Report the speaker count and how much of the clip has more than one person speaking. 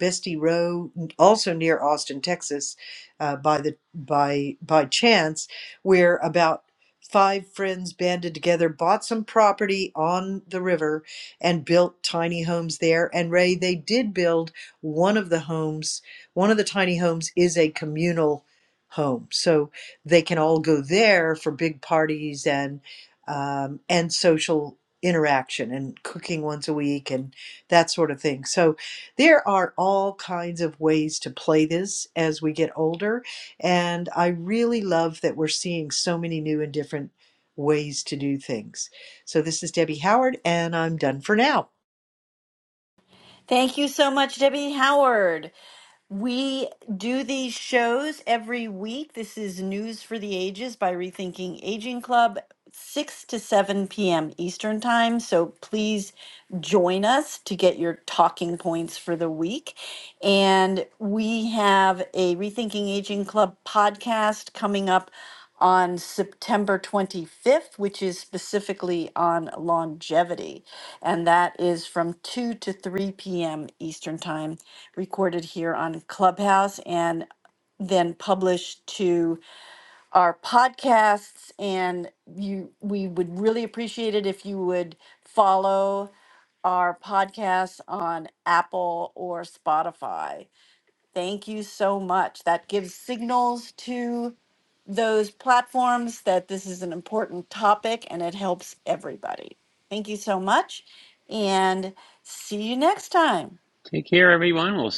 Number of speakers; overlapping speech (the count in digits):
3, no overlap